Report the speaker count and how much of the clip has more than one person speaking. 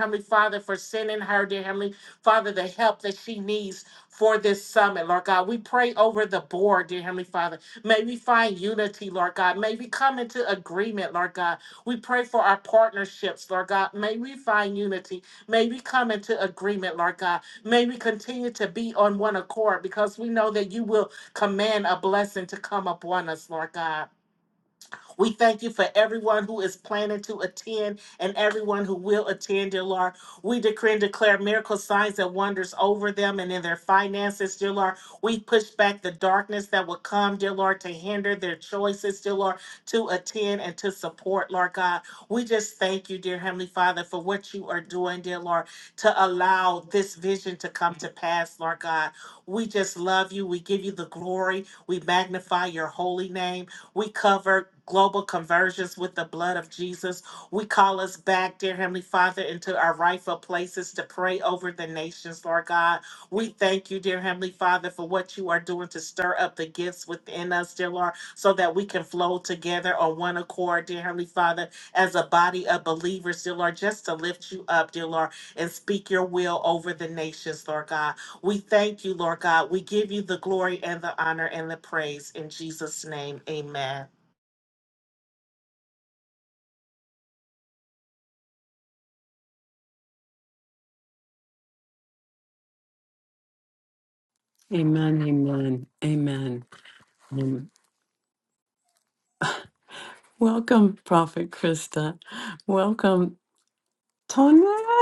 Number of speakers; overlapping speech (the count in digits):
2, no overlap